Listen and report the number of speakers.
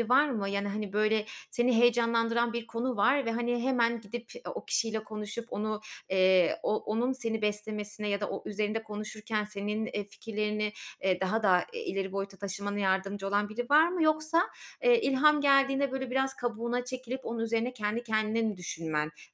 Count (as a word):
one